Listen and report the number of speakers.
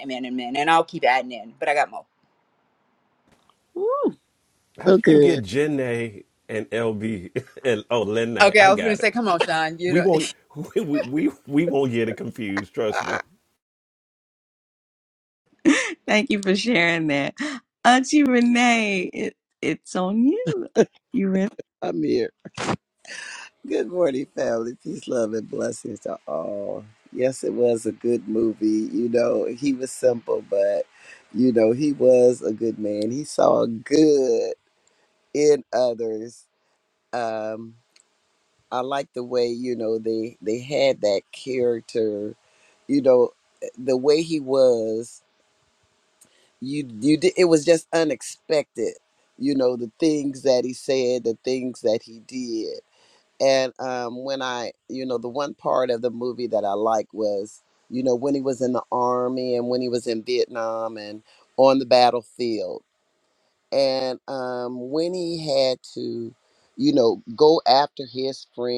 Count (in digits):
4